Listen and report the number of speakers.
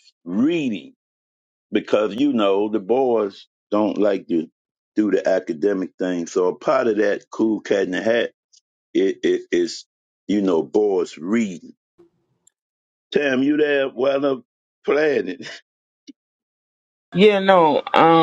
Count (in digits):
2